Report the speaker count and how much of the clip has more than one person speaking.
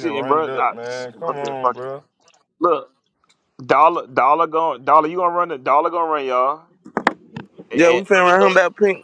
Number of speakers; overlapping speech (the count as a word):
three, about 19%